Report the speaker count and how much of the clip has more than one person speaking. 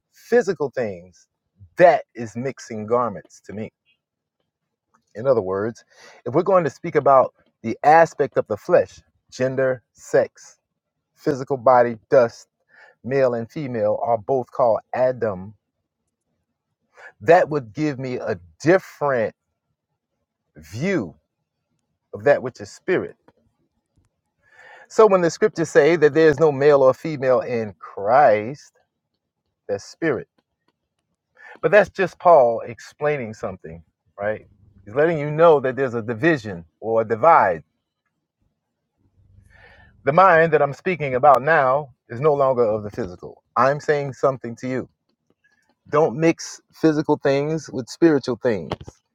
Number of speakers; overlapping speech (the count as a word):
one, no overlap